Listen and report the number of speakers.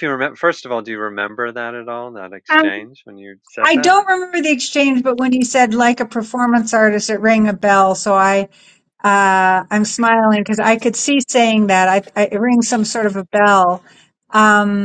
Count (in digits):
2